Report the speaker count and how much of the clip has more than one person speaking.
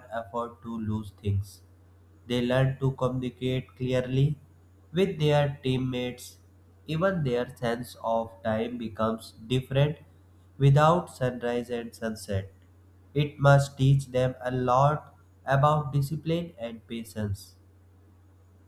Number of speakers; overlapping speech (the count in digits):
1, no overlap